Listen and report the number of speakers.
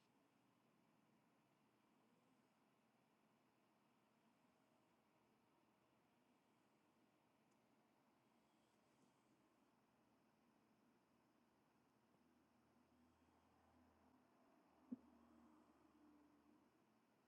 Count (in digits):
0